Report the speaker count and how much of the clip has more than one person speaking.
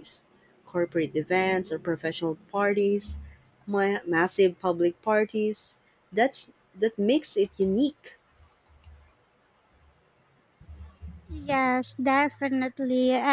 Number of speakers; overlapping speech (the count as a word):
two, no overlap